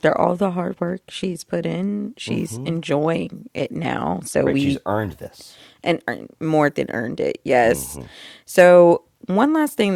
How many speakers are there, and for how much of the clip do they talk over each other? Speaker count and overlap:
two, about 9%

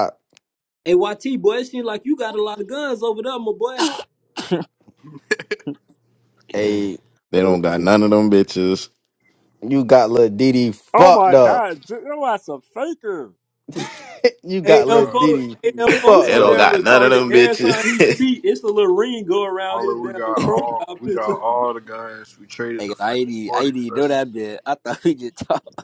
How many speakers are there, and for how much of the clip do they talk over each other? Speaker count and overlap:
five, about 28%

